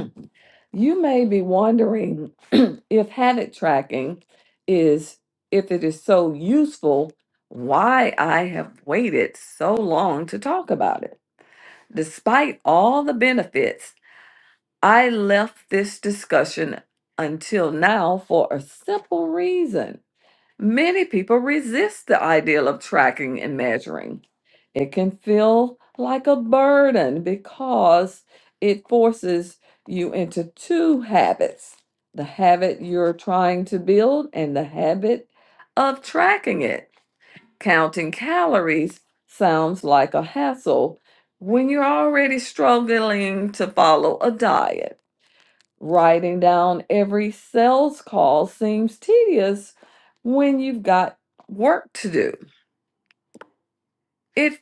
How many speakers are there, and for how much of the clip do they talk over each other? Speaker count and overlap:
1, no overlap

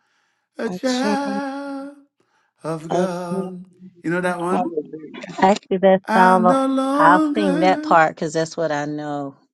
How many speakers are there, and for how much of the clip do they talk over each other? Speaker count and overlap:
3, about 30%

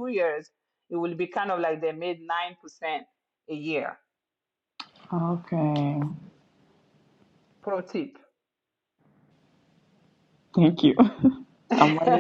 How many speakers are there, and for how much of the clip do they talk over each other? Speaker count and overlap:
2, no overlap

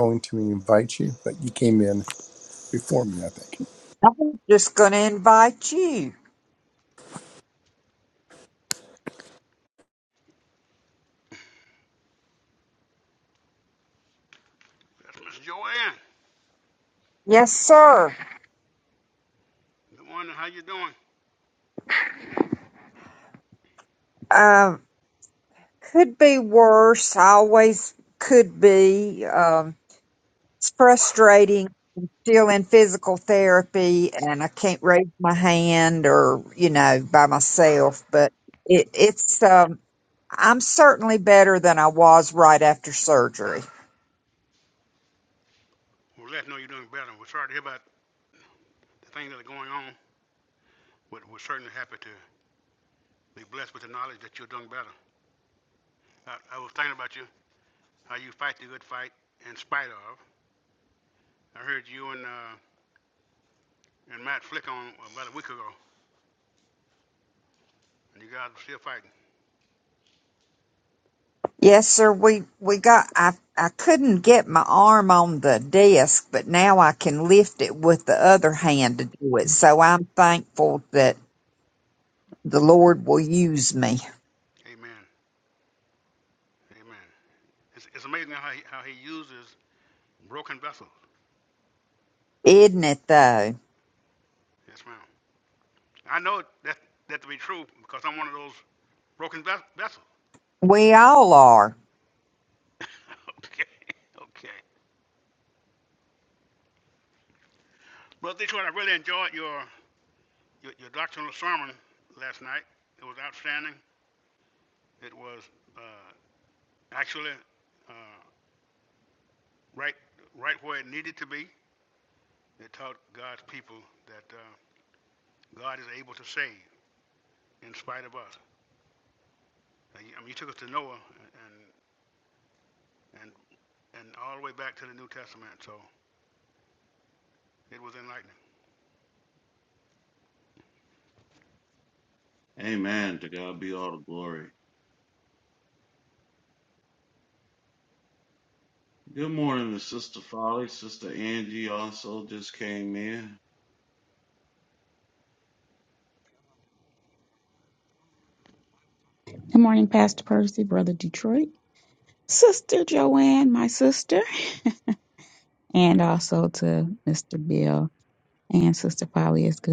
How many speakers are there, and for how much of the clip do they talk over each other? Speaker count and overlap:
5, no overlap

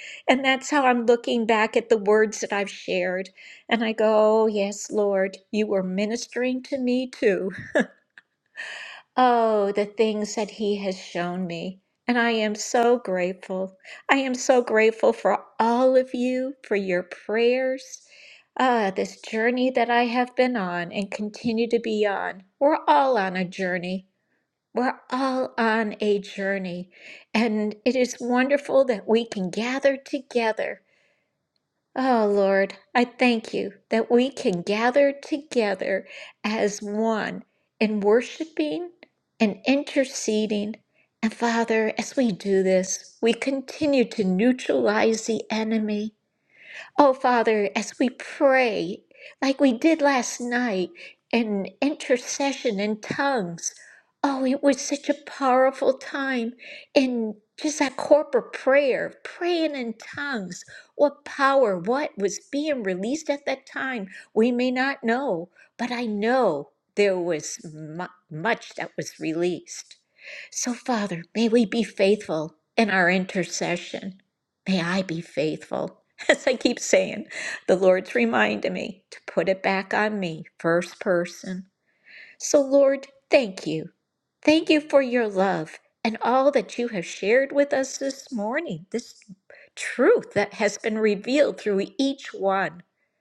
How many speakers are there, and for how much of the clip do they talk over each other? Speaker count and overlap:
1, no overlap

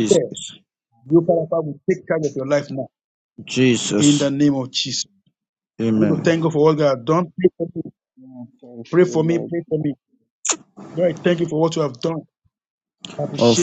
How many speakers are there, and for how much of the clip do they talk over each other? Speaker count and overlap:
3, about 18%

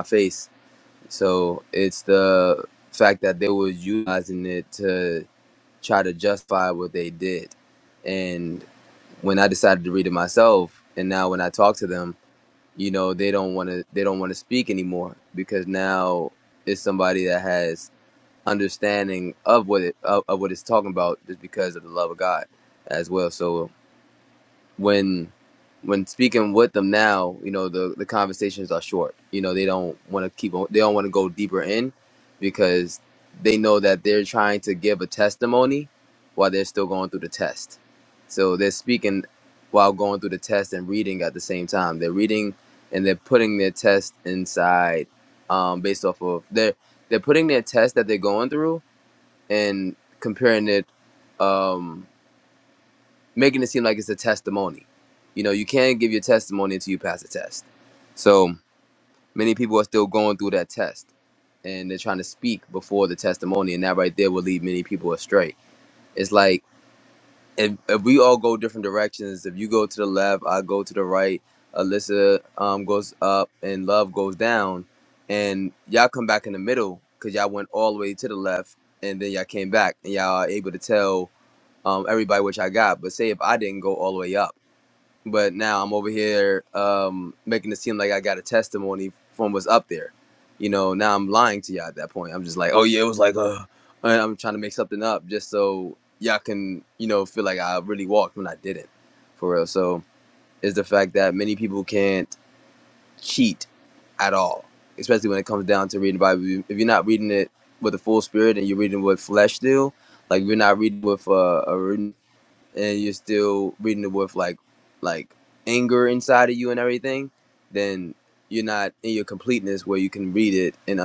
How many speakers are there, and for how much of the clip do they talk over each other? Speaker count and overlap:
1, no overlap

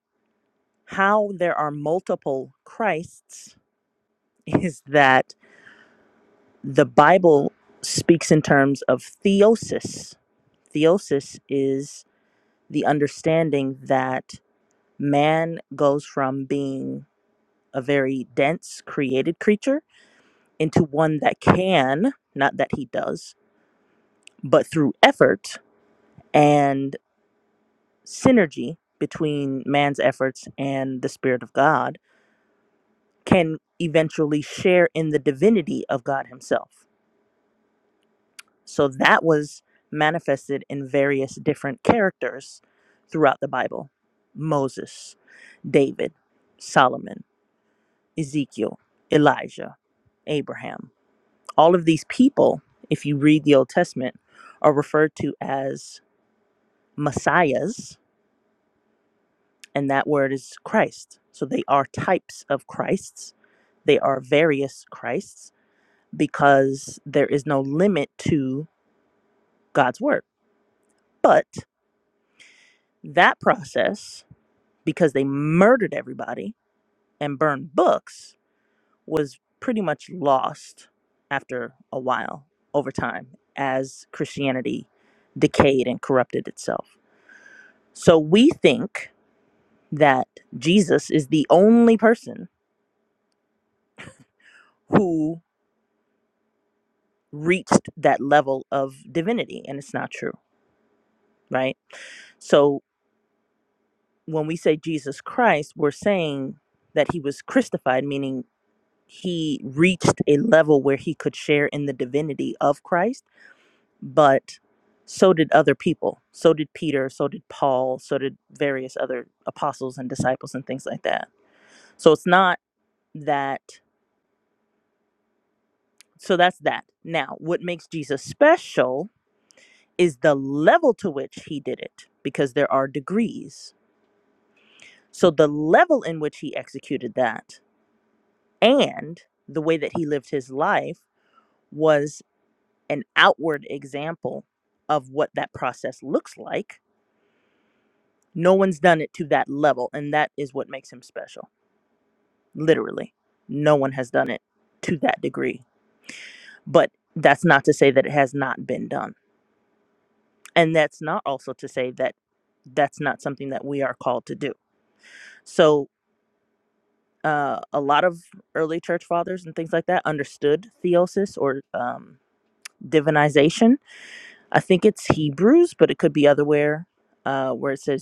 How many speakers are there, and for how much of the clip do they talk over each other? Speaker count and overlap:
1, no overlap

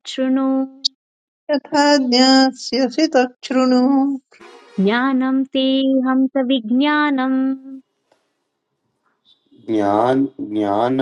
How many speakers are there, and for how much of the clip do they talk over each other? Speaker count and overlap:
3, no overlap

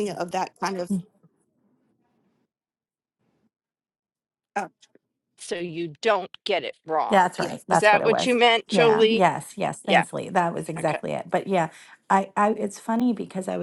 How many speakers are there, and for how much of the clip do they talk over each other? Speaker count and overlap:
3, about 14%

